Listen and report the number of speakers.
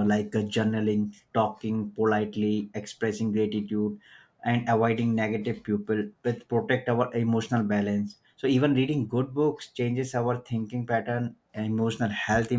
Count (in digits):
1